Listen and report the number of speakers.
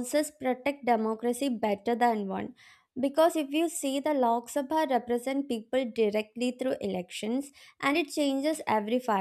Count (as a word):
one